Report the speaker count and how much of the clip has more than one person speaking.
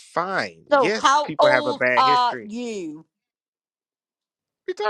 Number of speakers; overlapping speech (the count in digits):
2, about 35%